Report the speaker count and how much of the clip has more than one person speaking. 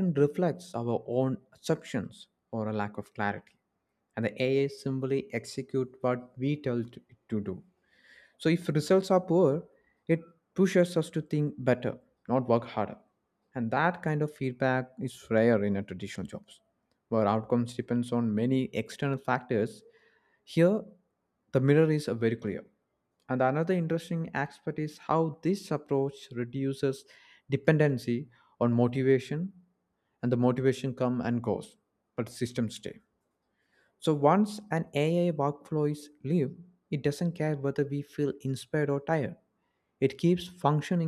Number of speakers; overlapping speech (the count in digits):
1, no overlap